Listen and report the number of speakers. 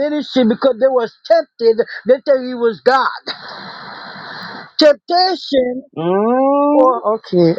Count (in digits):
2